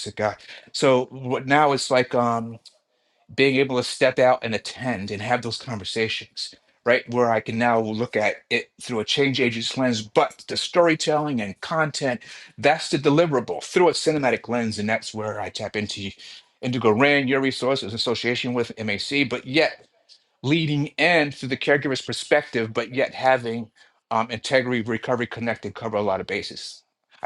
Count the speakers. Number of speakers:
one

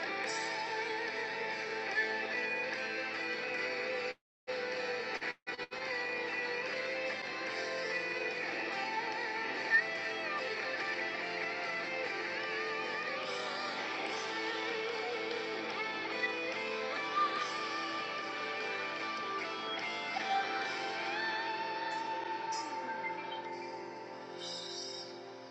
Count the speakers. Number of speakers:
zero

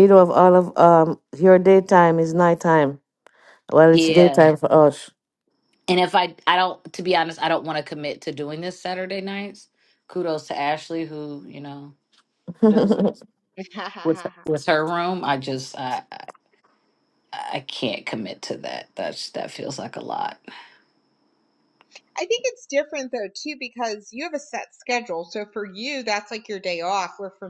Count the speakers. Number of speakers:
three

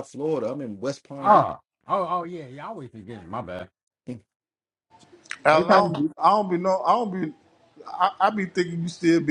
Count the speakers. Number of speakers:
three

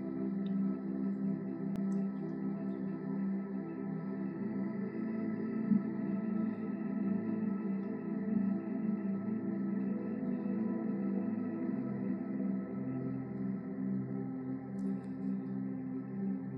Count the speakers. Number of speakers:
zero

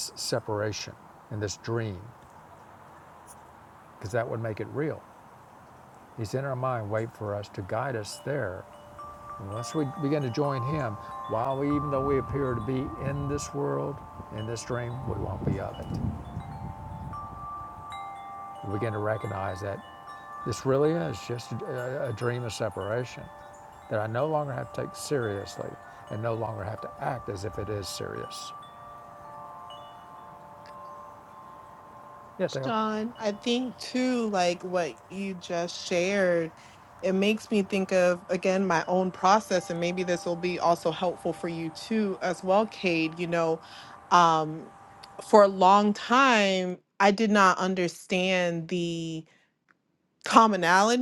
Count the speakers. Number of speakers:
two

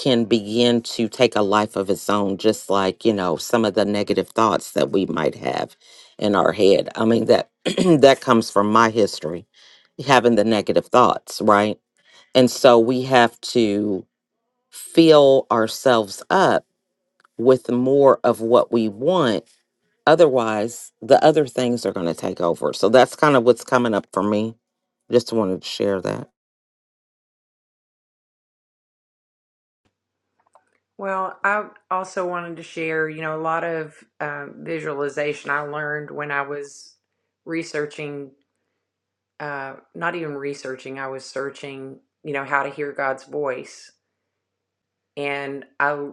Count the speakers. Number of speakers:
two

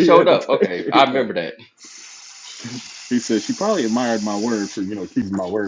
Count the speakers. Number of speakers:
two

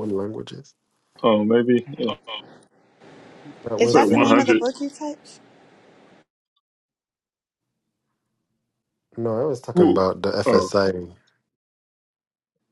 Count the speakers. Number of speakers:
three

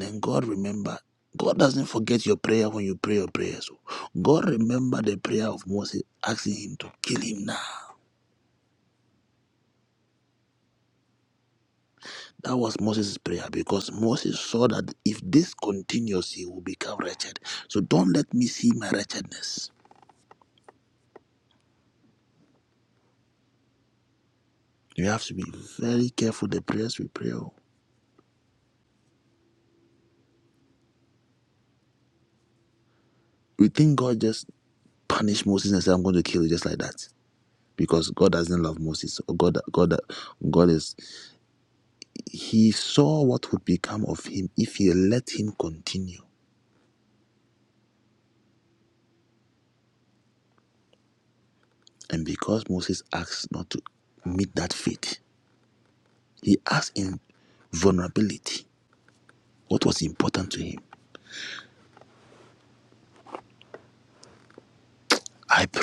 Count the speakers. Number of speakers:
one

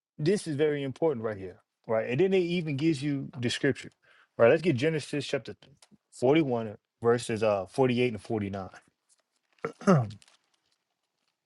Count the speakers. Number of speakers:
one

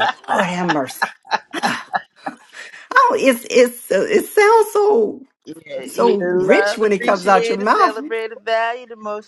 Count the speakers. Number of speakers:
two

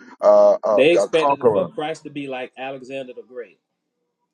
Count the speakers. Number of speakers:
two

